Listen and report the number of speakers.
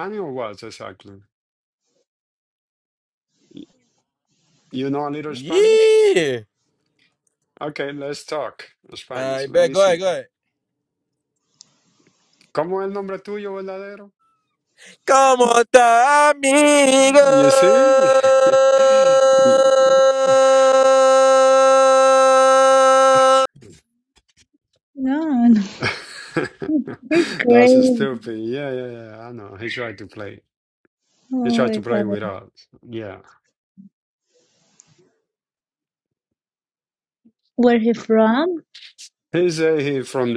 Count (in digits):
3